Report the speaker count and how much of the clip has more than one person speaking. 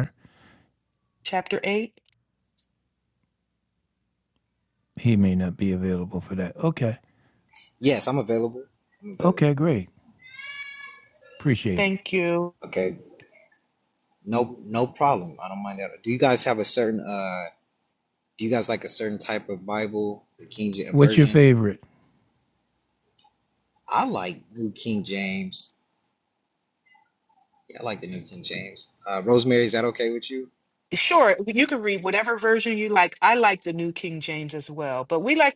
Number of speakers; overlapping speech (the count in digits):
3, about 2%